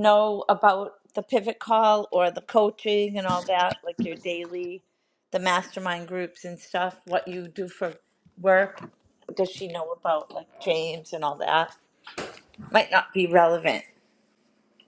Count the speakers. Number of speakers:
1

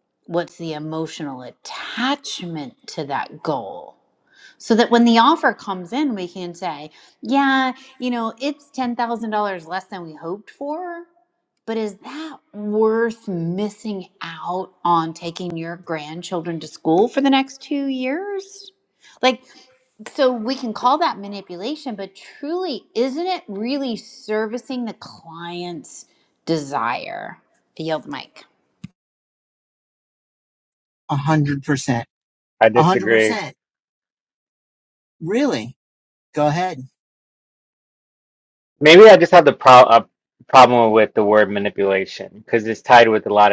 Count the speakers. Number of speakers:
3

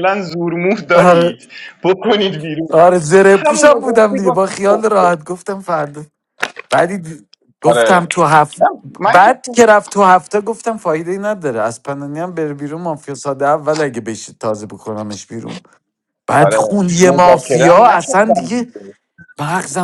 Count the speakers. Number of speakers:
2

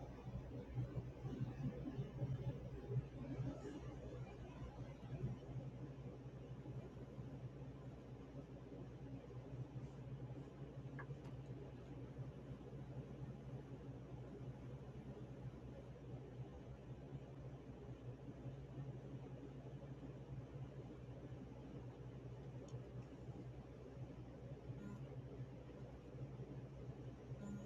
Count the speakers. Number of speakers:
0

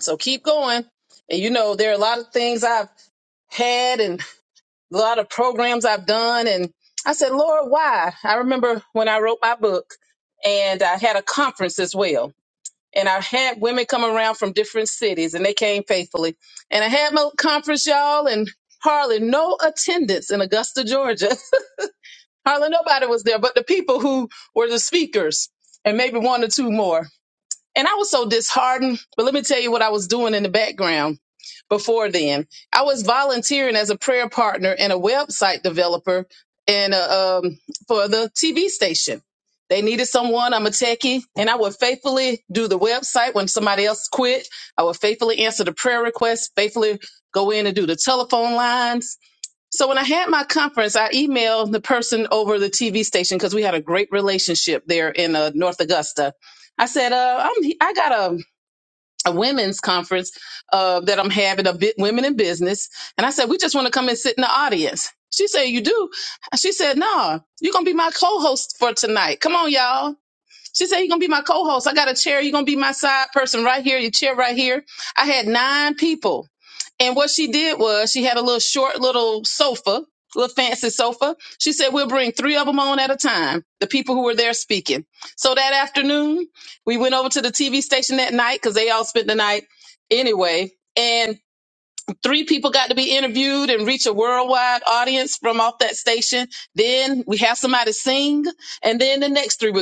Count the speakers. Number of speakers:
1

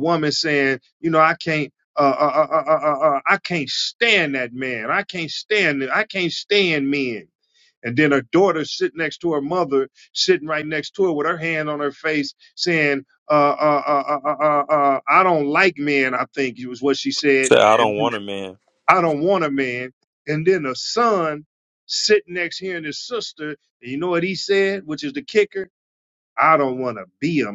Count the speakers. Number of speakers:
2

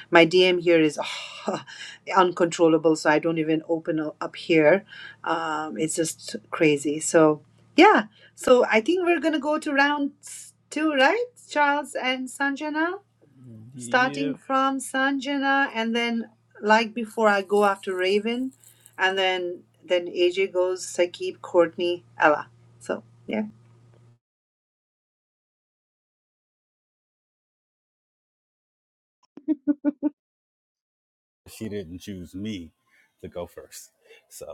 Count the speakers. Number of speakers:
2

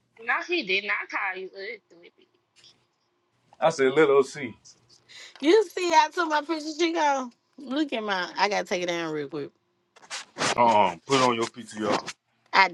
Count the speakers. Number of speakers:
3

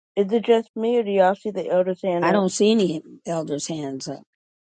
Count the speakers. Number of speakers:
2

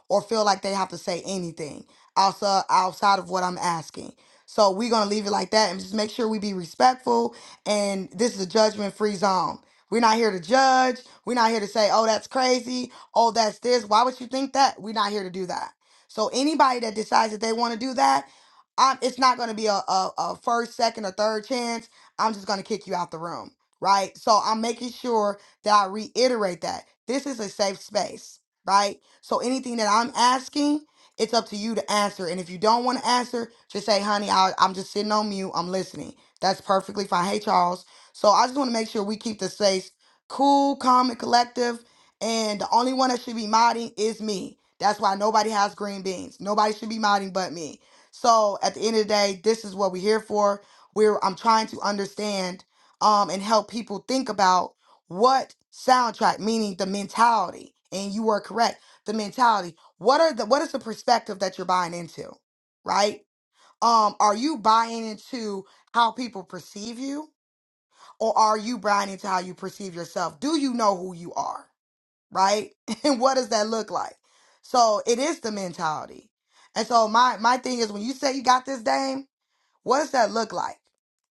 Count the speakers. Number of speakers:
1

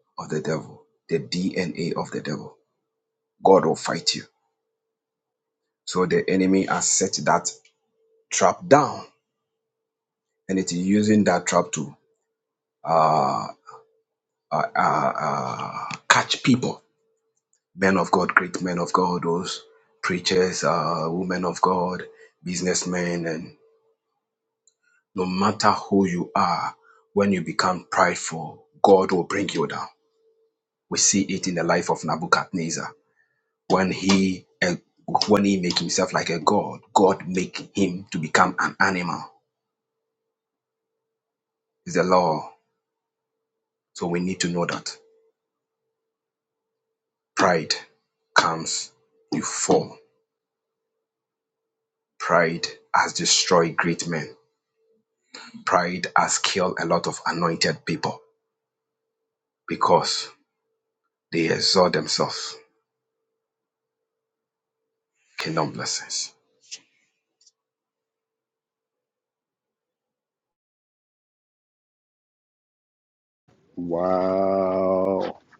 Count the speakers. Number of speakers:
2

